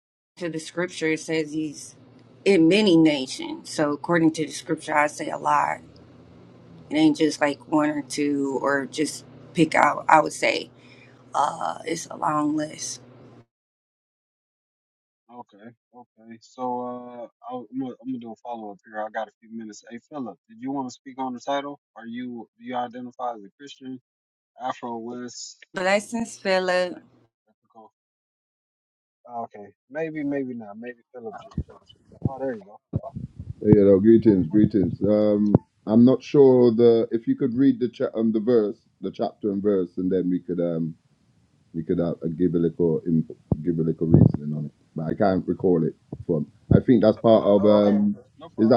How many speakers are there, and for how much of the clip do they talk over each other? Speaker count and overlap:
3, about 1%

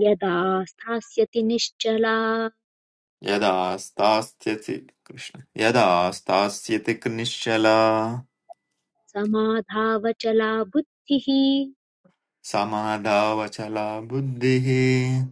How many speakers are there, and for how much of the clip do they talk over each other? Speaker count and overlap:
2, no overlap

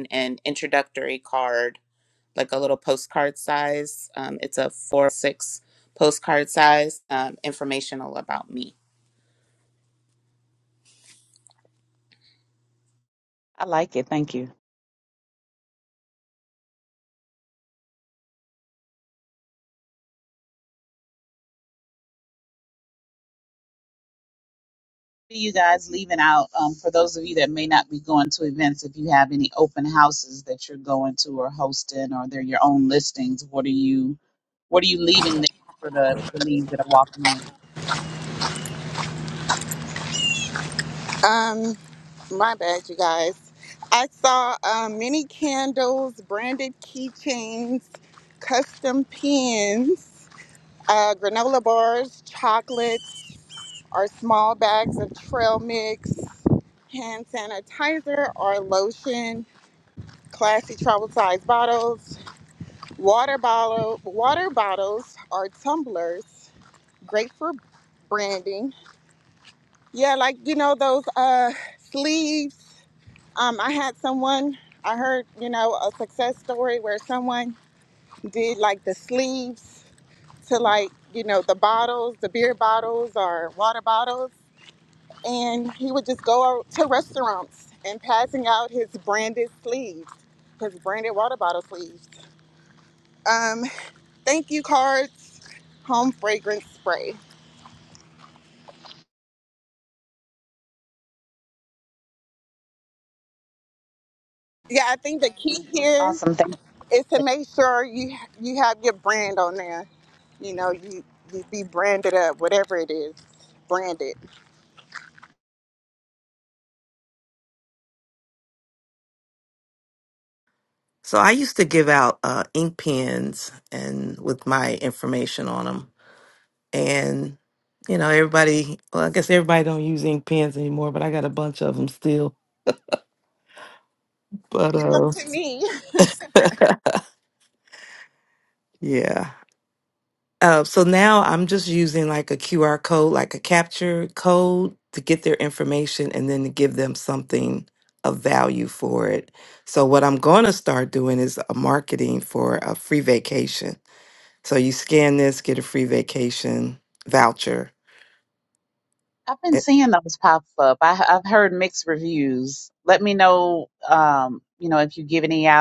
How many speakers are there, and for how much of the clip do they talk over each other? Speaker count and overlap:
4, under 1%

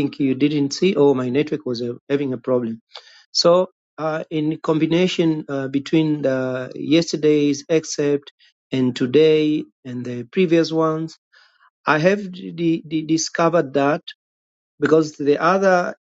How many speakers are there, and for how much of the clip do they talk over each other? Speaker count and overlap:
1, no overlap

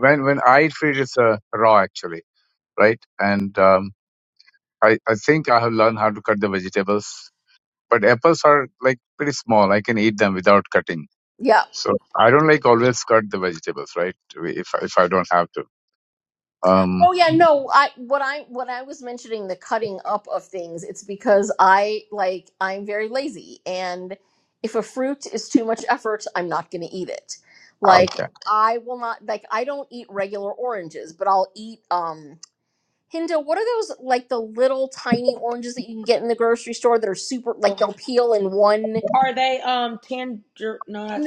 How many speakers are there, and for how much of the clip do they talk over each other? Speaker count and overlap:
3, about 1%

